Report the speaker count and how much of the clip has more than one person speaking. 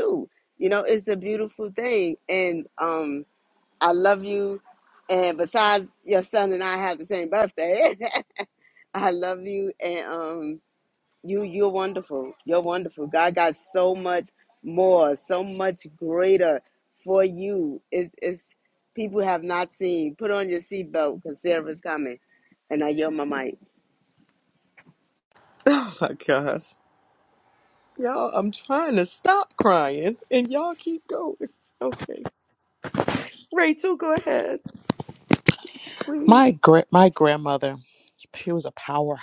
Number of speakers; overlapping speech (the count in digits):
3, under 1%